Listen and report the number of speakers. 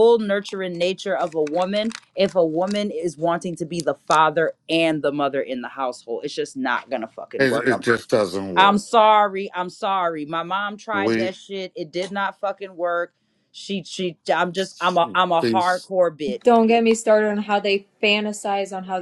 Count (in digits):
3